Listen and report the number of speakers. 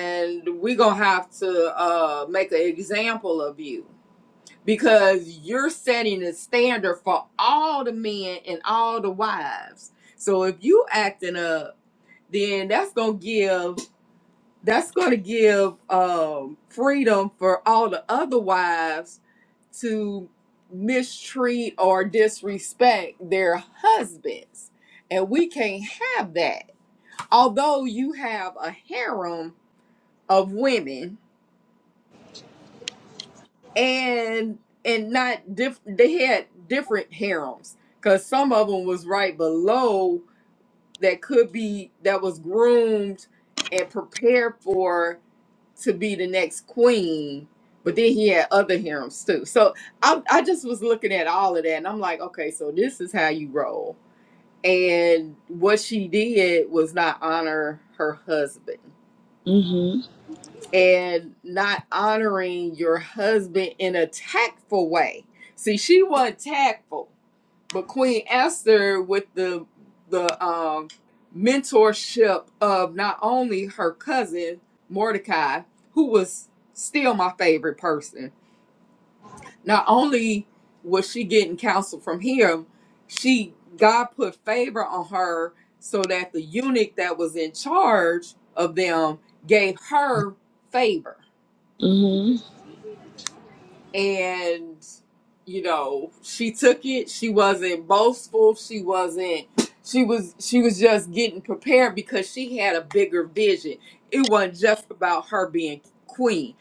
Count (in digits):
2